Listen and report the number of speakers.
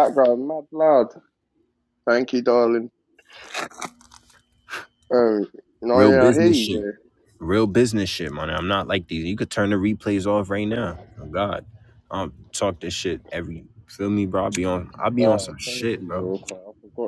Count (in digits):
2